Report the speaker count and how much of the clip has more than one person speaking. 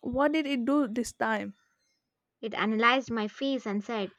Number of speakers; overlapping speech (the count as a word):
two, no overlap